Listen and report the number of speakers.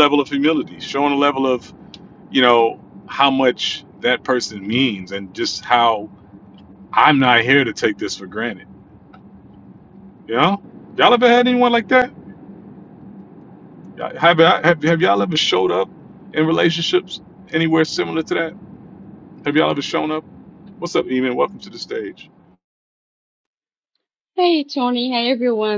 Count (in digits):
2